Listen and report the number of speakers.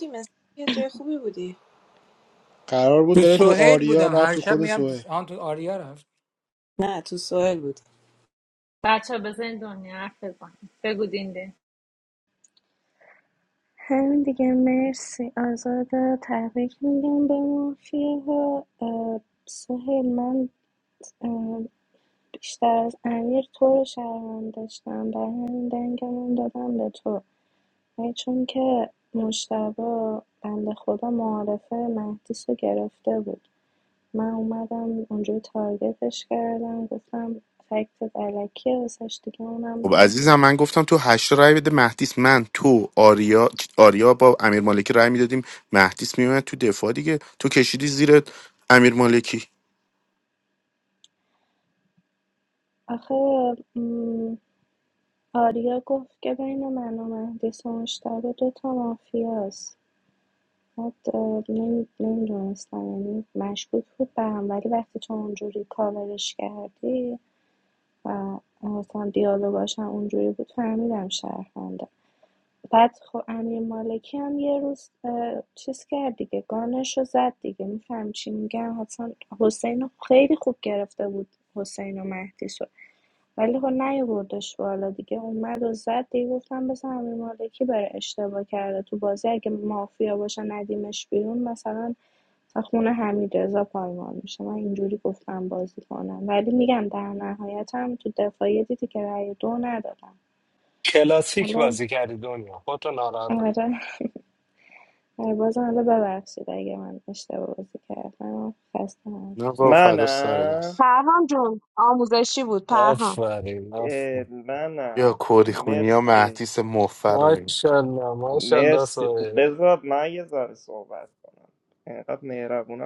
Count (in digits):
9